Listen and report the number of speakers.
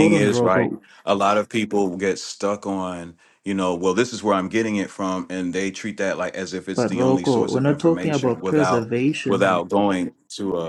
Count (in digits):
2